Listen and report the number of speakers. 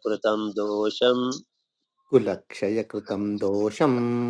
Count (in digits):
2